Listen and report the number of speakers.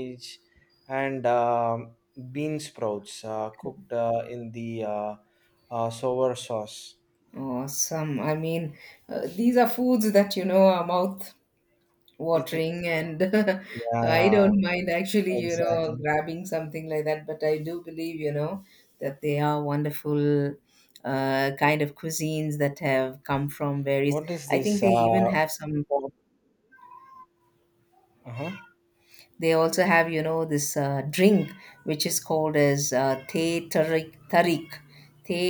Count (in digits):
2